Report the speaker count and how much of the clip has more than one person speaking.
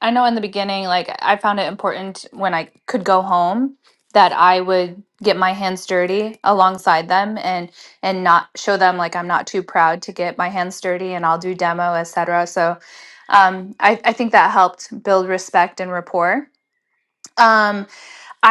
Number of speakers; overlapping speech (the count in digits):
1, no overlap